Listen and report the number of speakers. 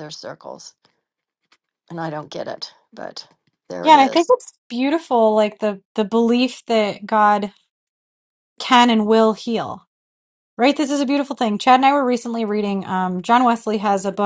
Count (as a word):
two